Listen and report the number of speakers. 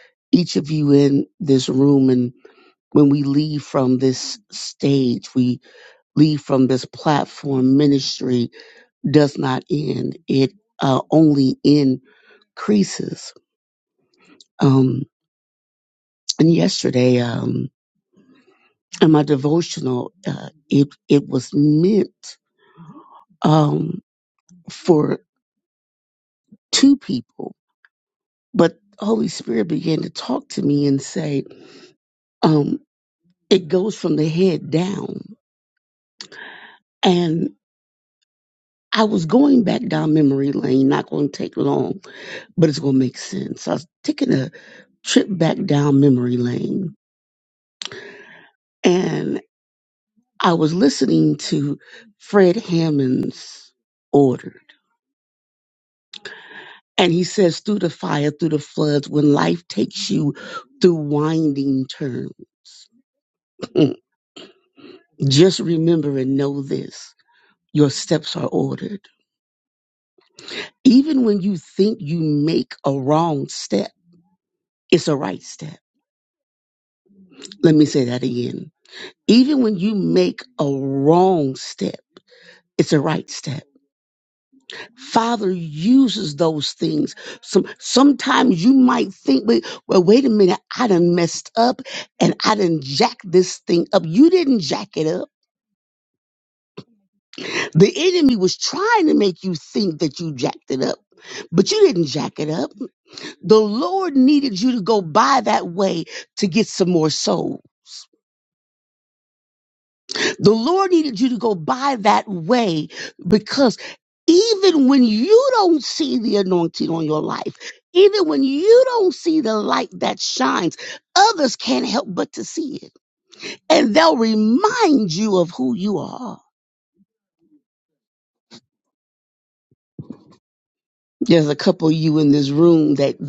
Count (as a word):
one